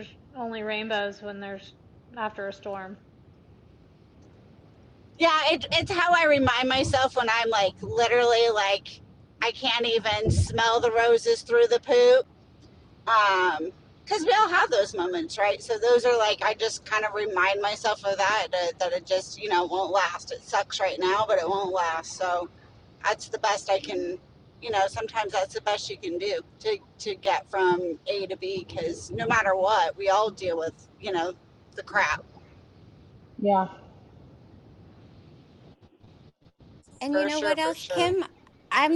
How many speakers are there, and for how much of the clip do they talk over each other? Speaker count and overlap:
3, about 3%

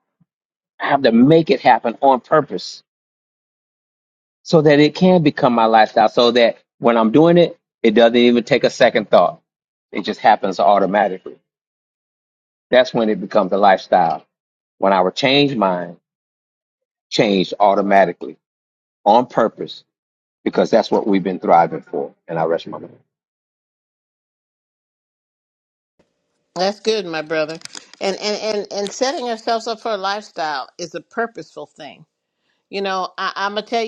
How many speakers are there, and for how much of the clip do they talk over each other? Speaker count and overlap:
2, no overlap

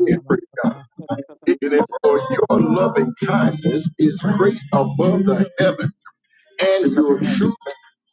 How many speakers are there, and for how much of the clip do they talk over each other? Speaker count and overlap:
1, no overlap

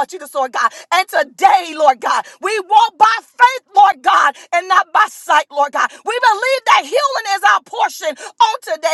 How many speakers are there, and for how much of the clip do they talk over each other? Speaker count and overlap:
1, no overlap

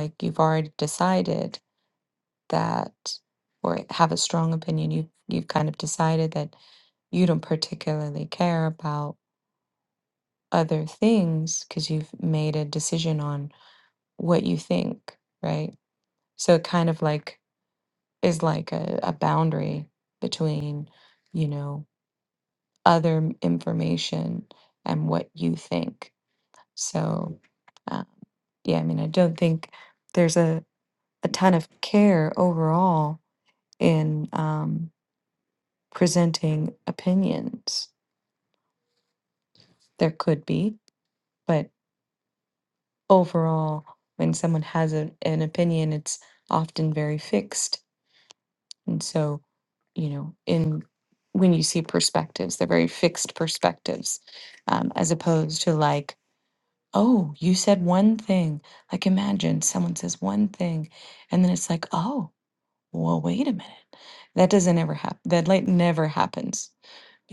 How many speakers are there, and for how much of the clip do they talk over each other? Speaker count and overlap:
1, no overlap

